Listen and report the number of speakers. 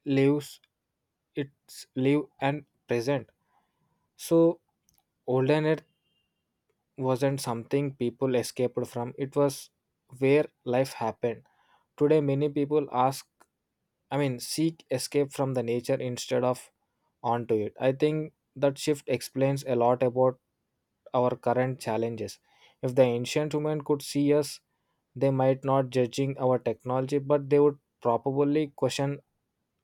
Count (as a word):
one